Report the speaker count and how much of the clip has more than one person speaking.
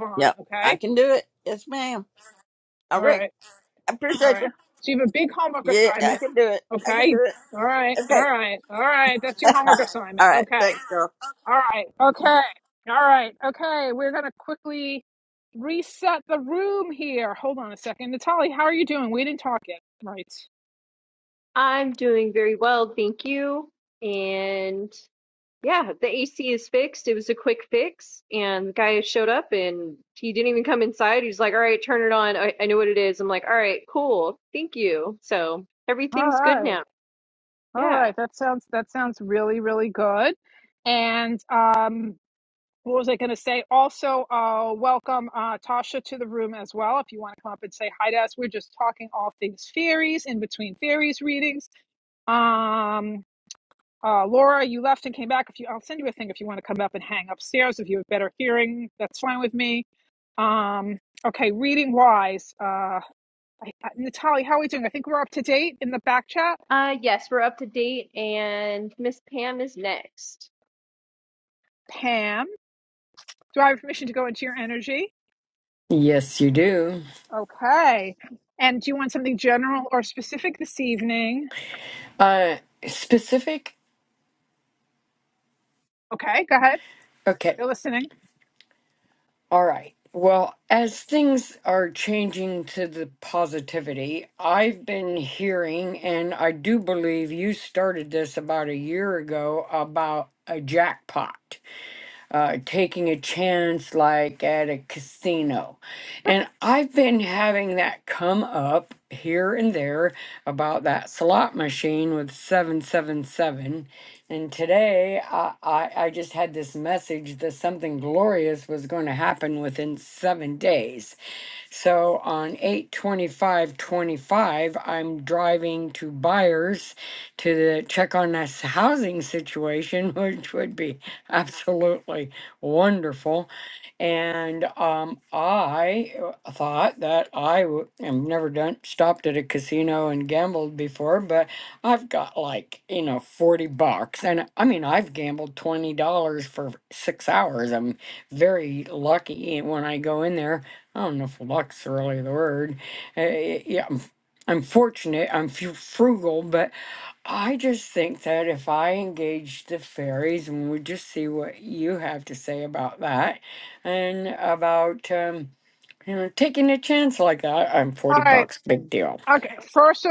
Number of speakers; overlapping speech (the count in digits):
4, about 3%